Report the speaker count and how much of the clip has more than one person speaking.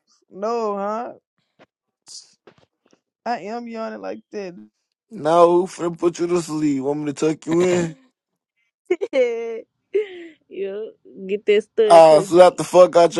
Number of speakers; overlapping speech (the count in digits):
3, about 5%